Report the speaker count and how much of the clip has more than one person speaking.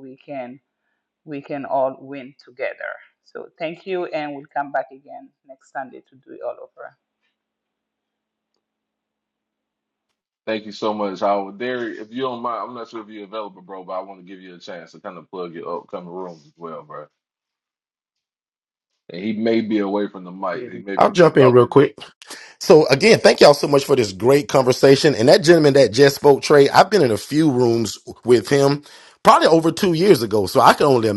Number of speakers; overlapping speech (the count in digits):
3, about 2%